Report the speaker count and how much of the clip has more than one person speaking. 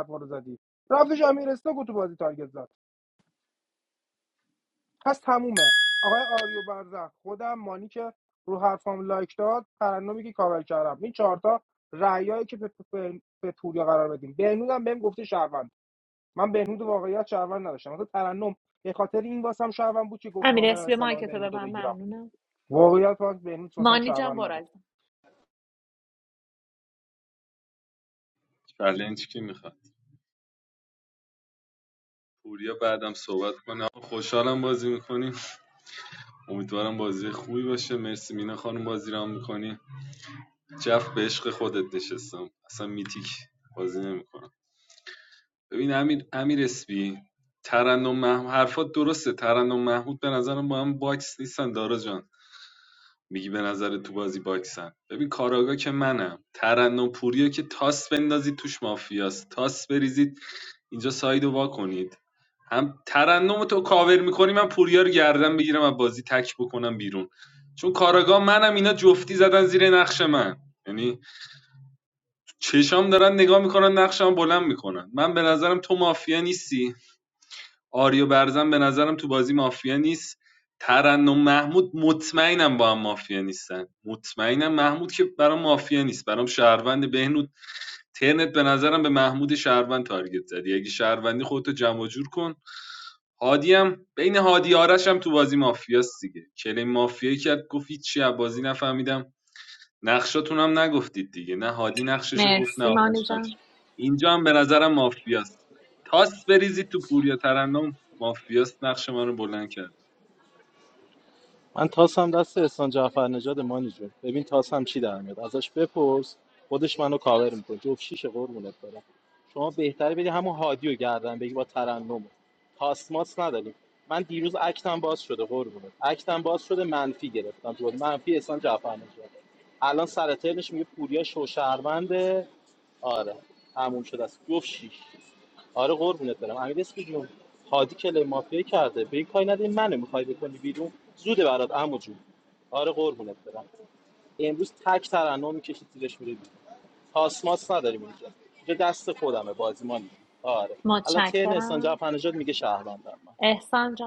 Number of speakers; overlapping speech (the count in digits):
4, about 3%